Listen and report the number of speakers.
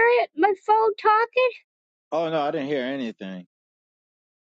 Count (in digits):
2